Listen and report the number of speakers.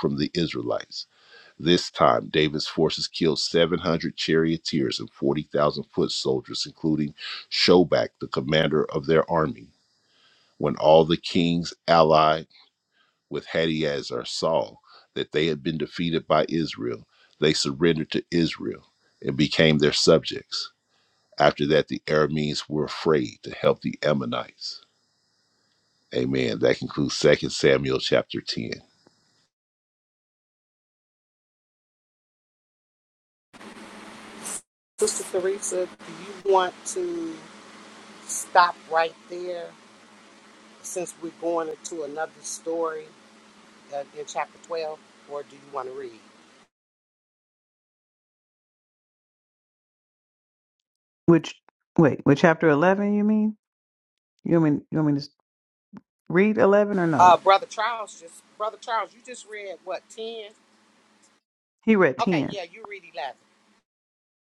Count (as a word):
three